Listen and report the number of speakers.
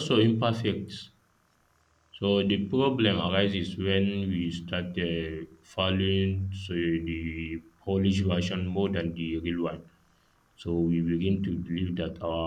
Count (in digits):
1